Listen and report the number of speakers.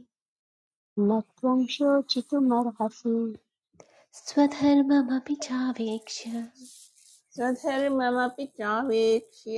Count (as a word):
three